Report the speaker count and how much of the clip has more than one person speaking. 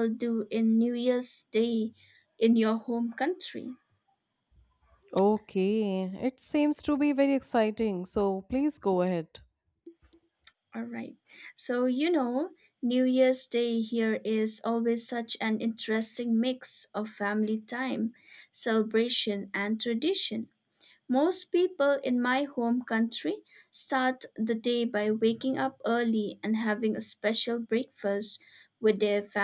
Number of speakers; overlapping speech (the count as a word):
two, no overlap